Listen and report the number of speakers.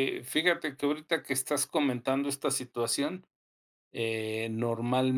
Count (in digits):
1